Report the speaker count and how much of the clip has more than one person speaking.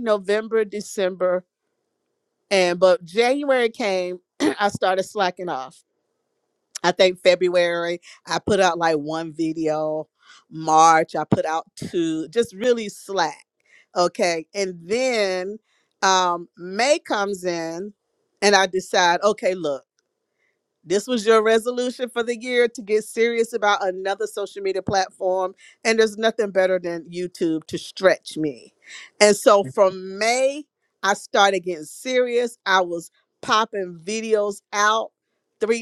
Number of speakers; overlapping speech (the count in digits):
1, no overlap